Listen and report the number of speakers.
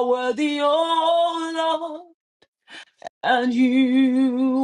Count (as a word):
one